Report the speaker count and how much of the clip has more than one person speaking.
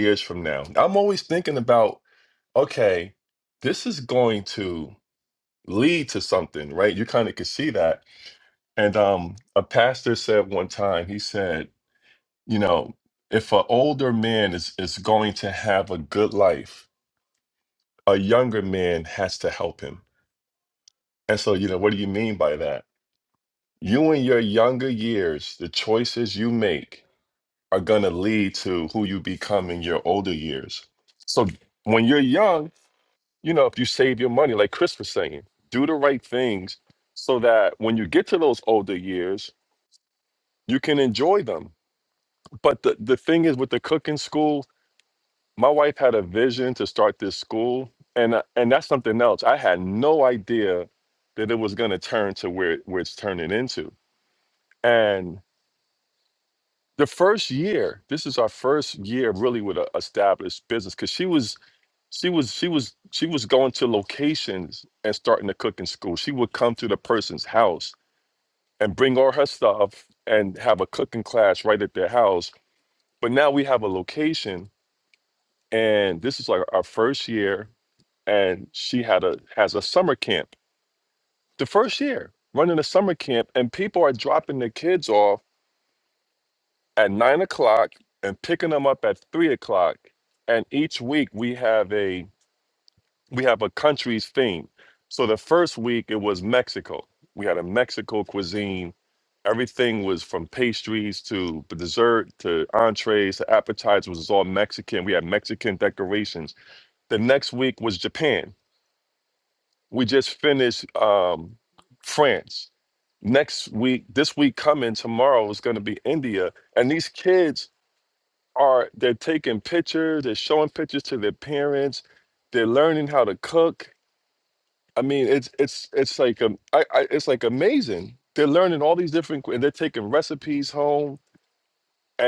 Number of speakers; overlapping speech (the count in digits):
1, no overlap